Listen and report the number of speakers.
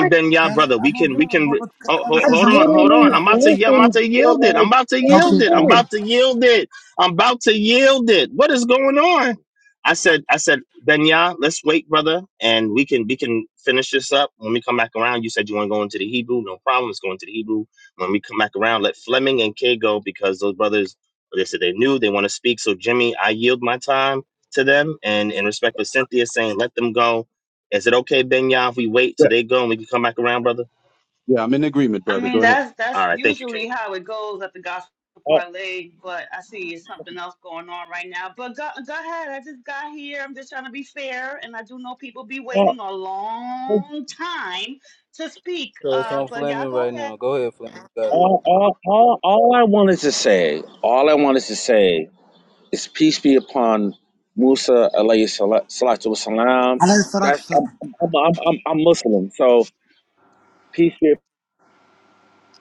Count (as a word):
six